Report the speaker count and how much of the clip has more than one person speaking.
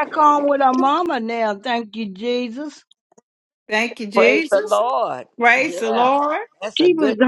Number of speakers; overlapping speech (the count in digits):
3, about 22%